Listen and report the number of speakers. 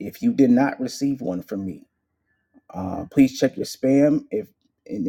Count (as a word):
one